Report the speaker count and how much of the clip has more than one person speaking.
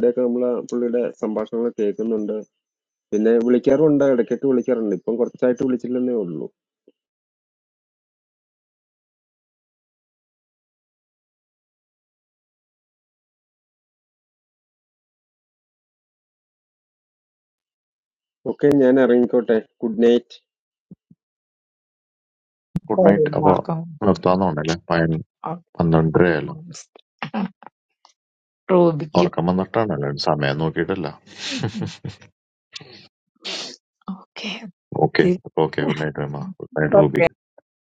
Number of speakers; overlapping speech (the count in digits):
3, about 3%